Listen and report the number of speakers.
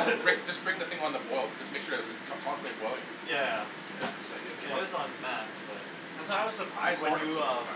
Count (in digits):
3